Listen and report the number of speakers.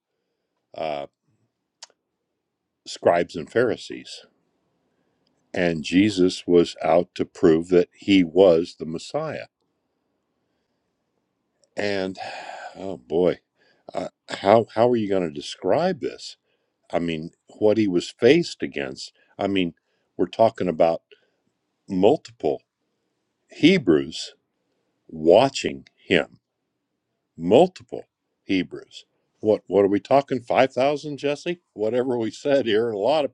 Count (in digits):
1